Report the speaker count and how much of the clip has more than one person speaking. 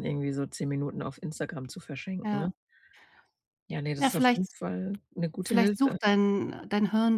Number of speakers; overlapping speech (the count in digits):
2, about 17%